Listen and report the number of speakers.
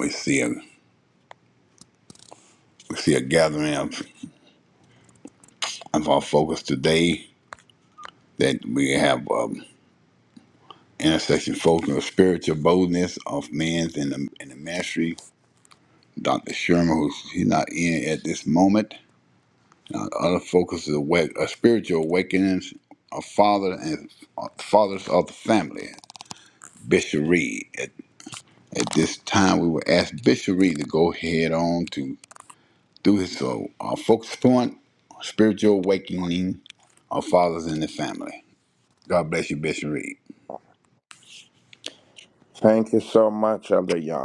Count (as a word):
two